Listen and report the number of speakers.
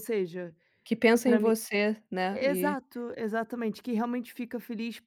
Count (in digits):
2